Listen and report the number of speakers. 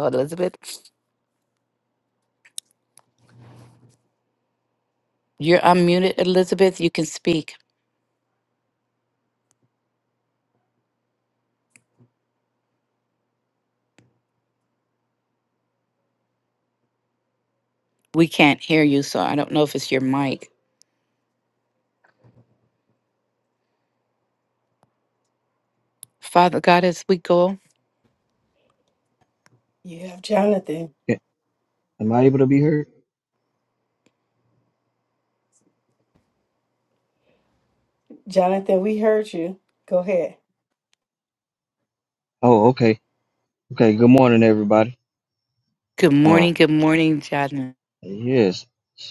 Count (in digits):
3